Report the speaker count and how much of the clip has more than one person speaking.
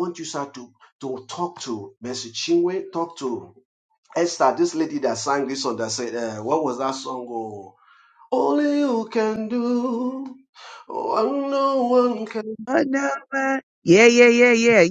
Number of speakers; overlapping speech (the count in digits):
2, no overlap